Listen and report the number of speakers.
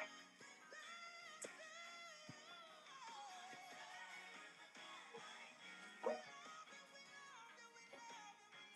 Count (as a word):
zero